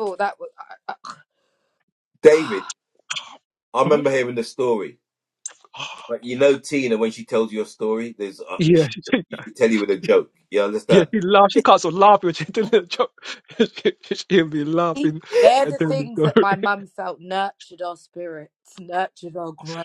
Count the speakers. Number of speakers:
3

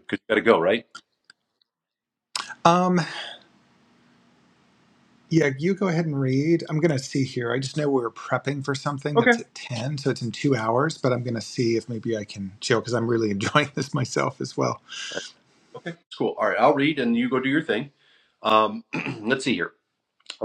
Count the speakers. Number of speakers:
2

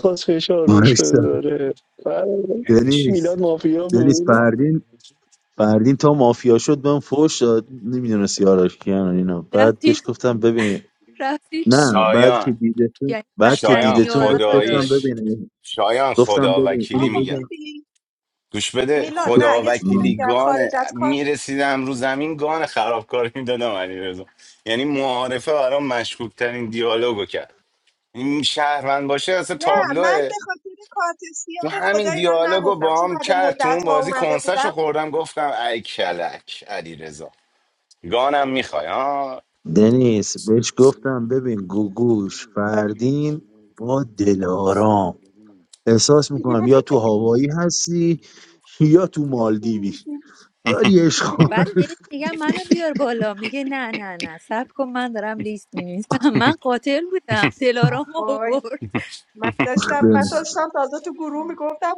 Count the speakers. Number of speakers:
5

